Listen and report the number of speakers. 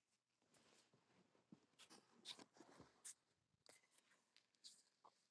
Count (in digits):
0